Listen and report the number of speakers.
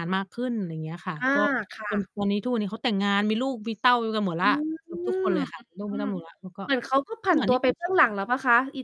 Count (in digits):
2